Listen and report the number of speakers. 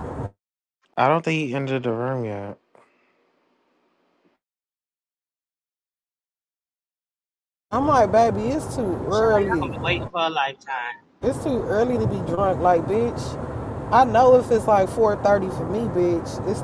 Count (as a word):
three